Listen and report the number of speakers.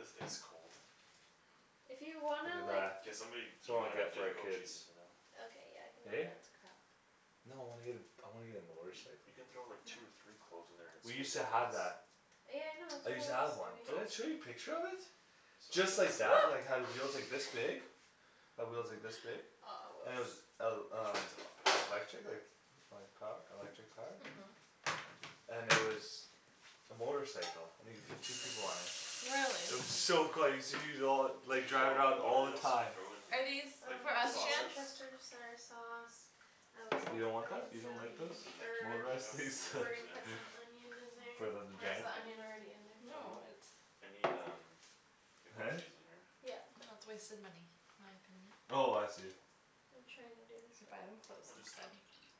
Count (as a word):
four